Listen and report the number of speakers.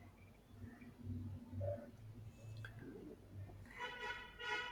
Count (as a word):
zero